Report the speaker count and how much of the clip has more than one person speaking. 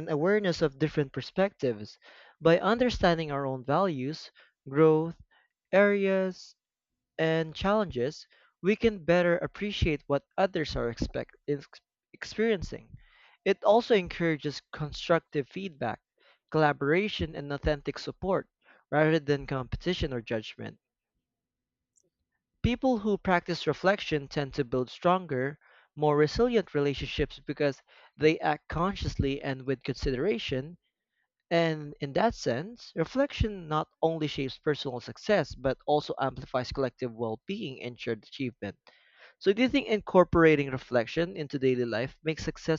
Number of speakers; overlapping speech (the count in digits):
1, no overlap